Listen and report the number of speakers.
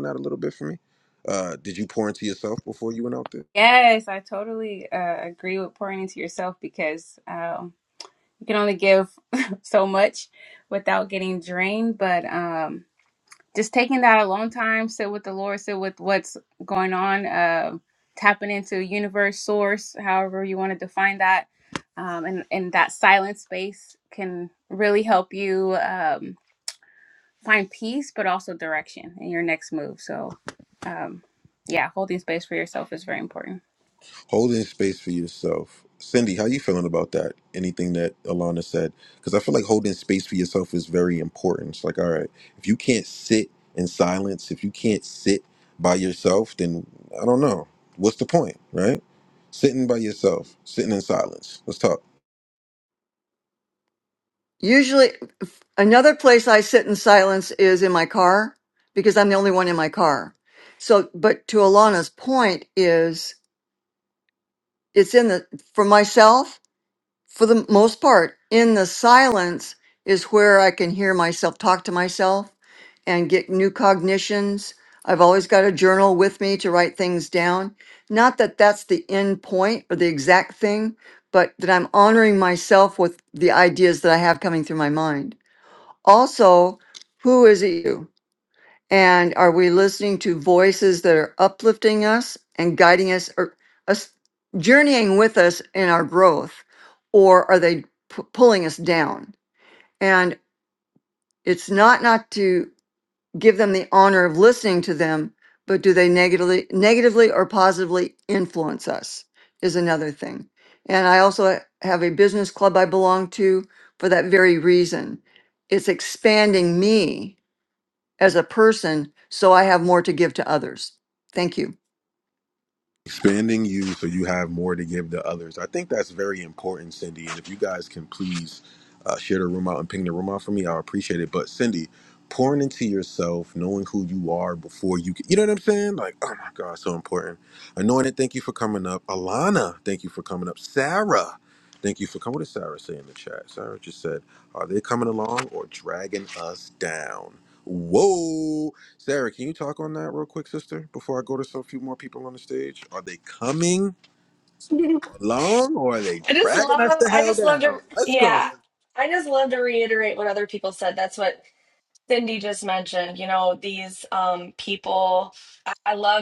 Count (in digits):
4